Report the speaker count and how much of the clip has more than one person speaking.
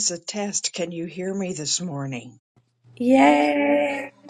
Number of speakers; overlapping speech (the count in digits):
2, no overlap